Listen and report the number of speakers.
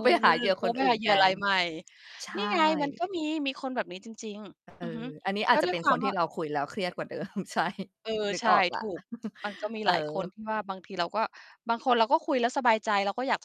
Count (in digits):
2